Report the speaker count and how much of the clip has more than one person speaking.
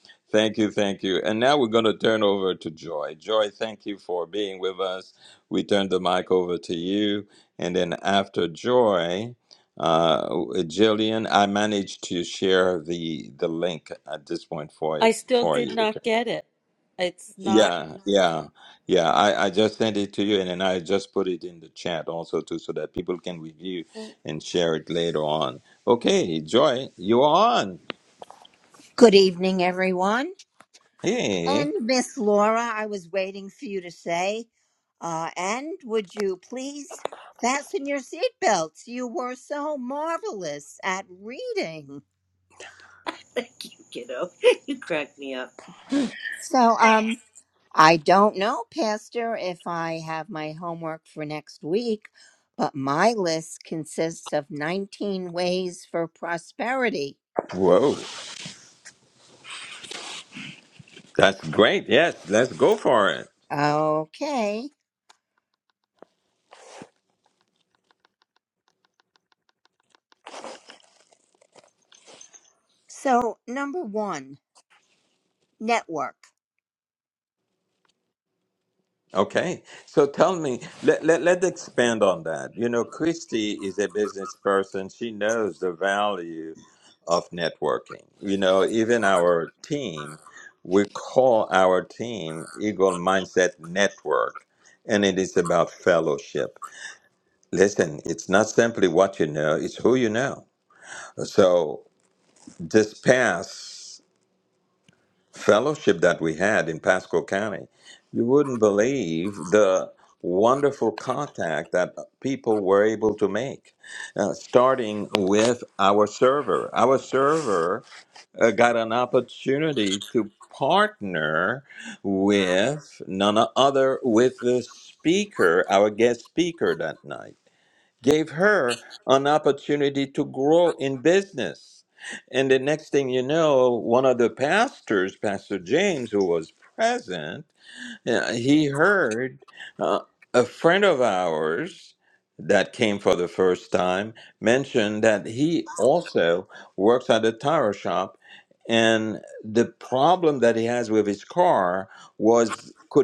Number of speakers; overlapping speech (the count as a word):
four, about 1%